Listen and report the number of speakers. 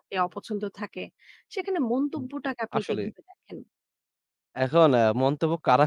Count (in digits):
2